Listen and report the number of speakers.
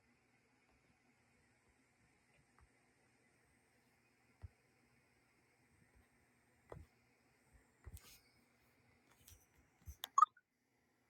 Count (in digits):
0